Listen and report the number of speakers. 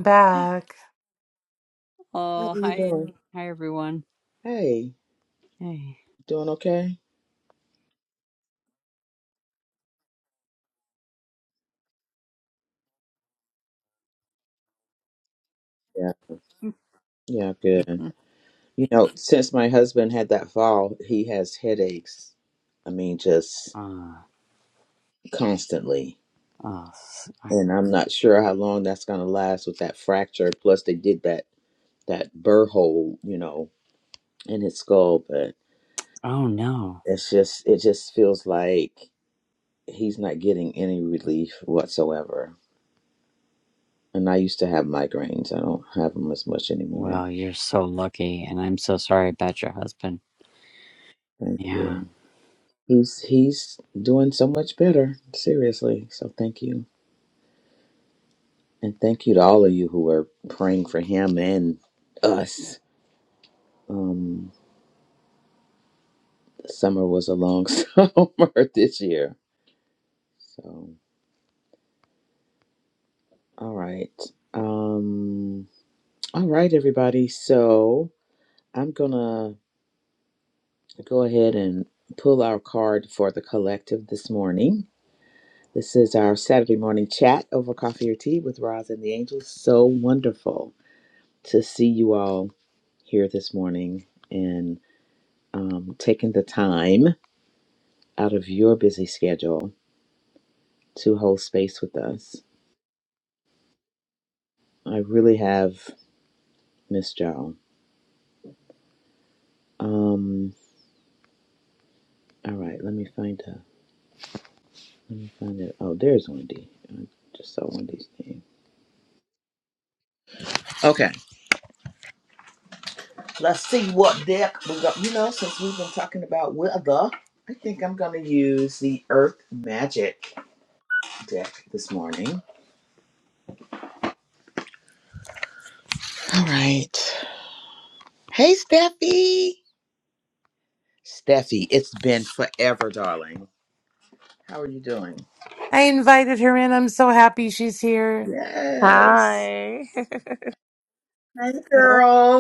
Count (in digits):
4